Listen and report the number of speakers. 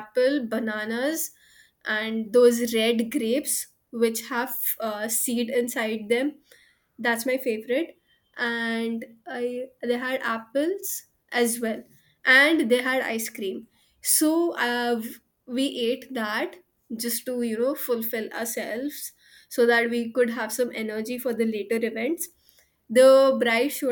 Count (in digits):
1